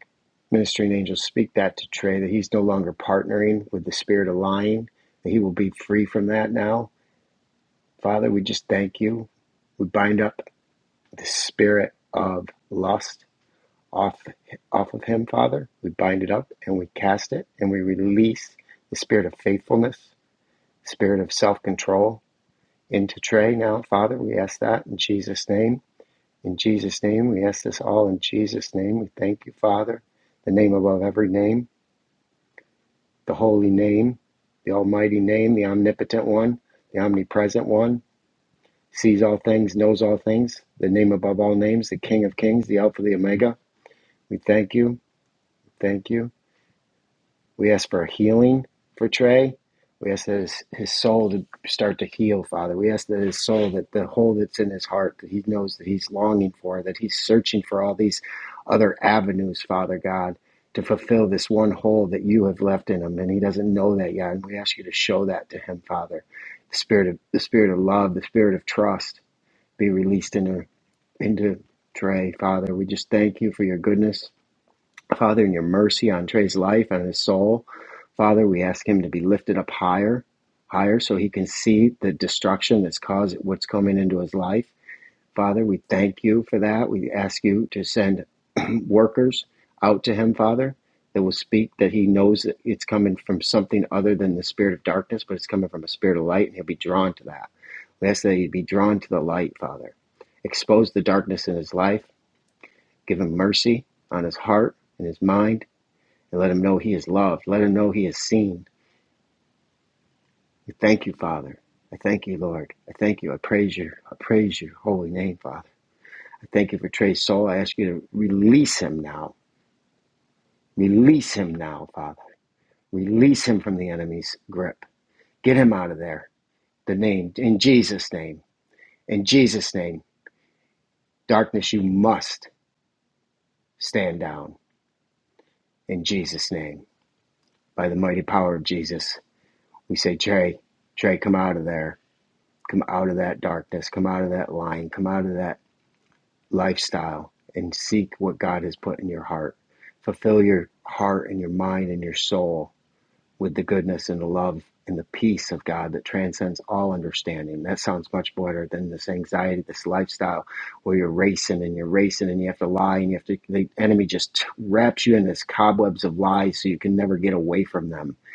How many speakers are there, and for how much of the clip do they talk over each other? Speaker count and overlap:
one, no overlap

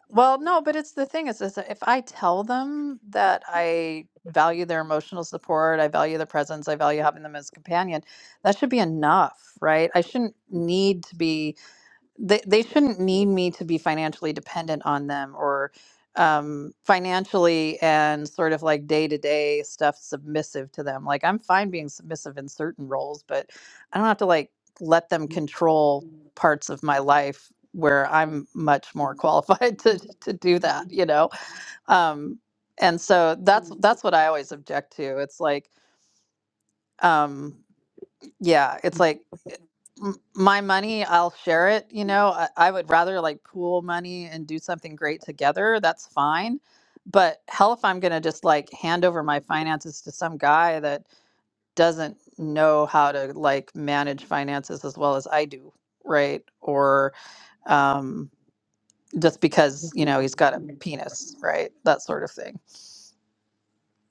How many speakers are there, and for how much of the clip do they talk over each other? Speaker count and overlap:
one, no overlap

